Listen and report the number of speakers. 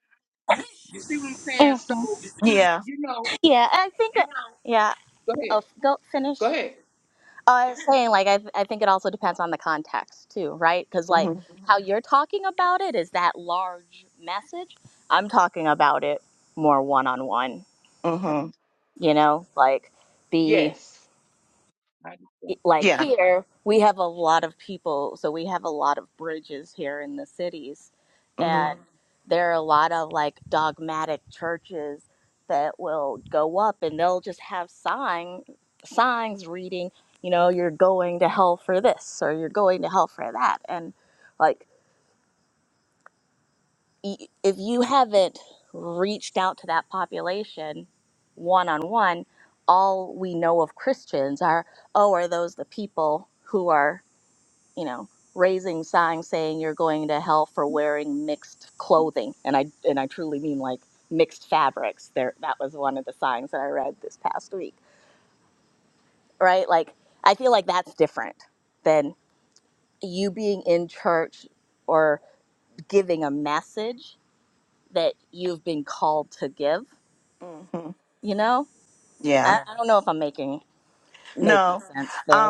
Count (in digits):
3